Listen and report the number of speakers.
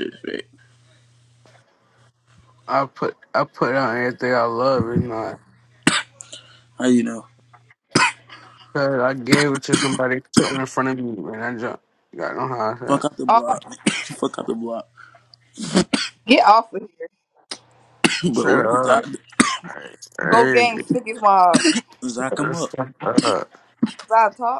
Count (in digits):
3